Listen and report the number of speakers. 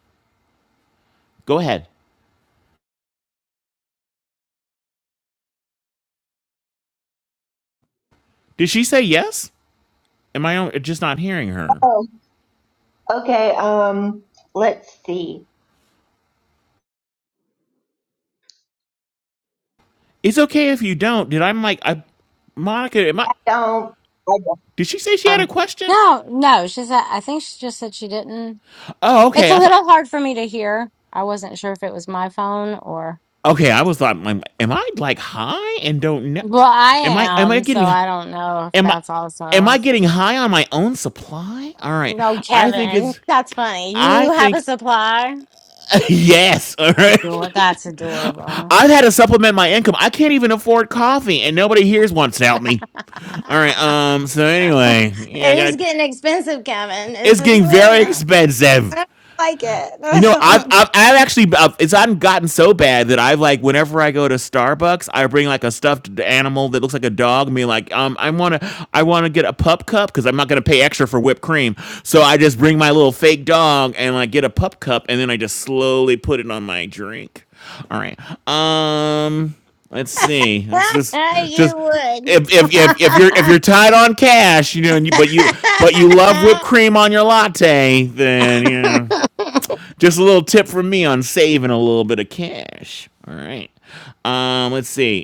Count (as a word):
three